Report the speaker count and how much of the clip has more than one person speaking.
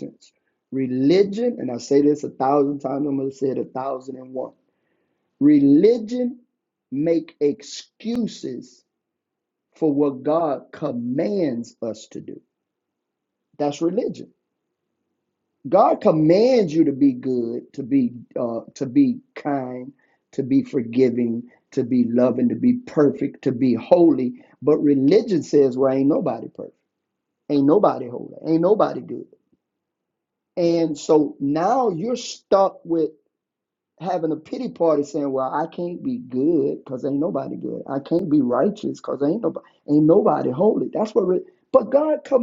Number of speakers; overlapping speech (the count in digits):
1, no overlap